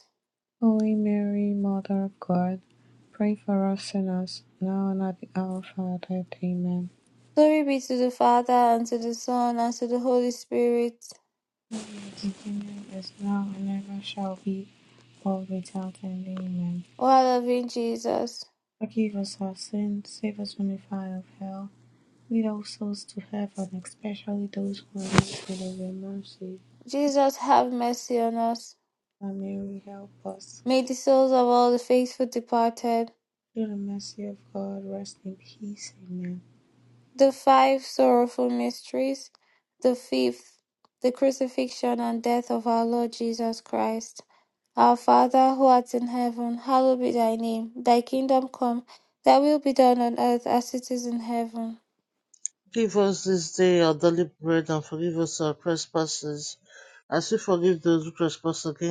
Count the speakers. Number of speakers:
three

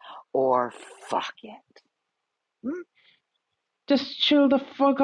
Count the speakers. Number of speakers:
two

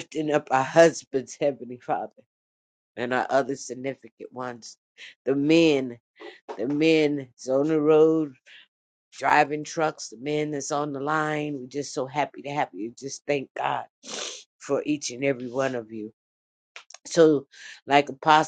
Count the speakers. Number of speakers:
one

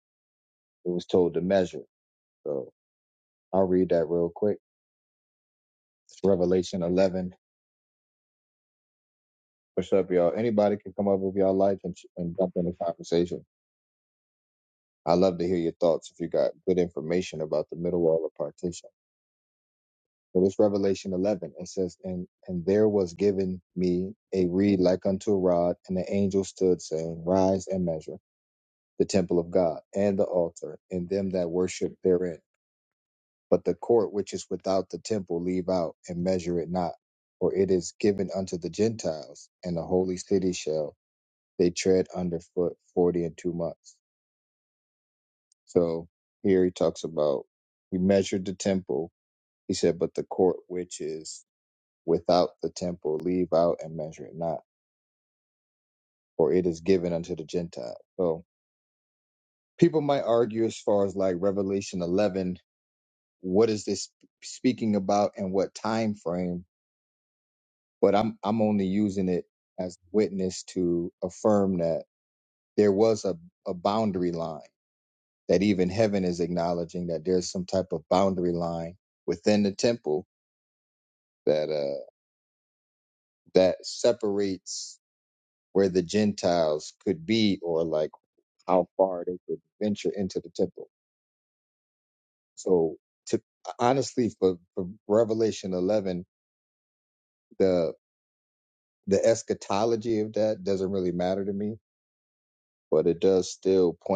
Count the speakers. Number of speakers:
one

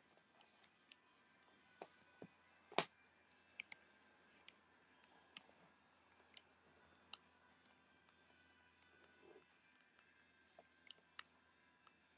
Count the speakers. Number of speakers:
zero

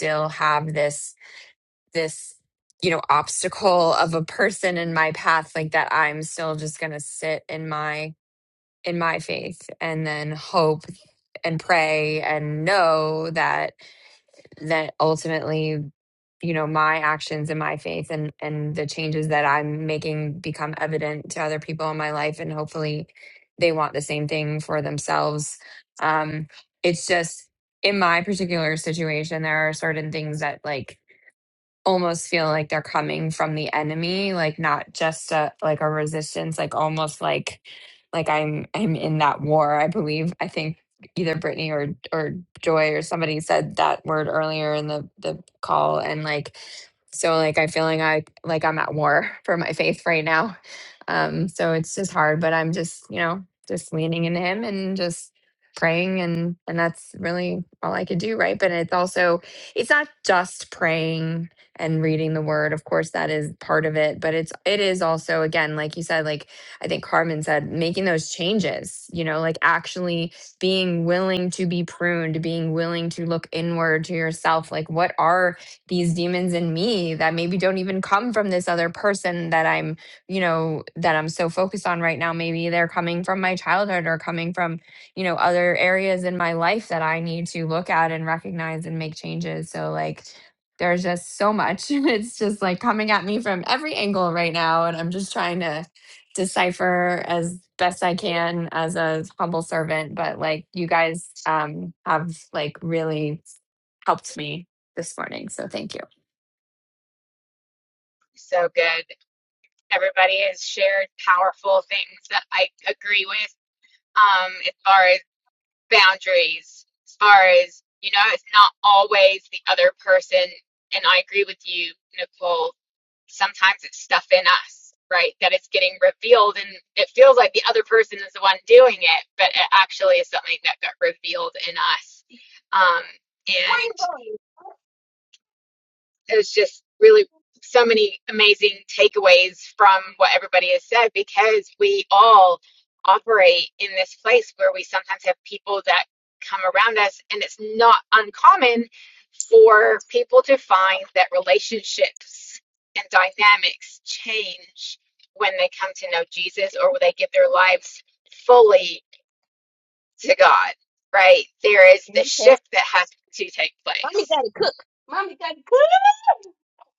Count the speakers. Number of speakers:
three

